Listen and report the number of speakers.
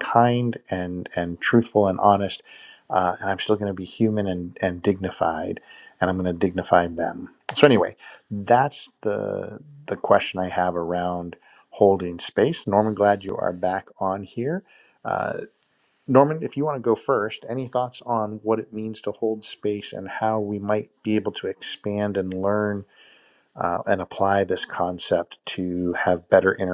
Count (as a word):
one